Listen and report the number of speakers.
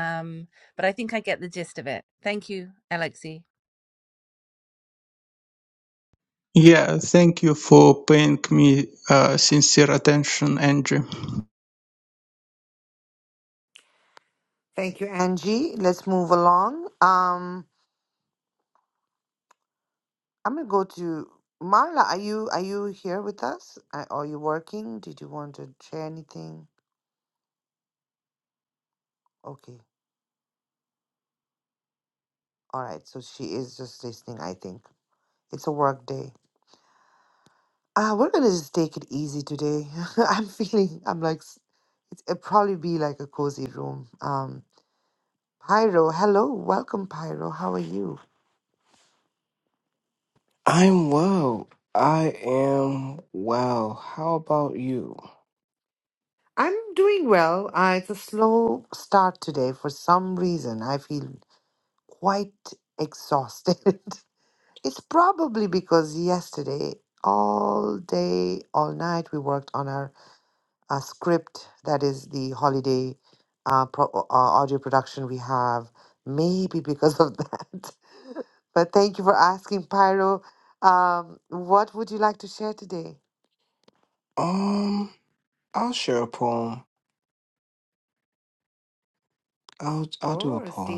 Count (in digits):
4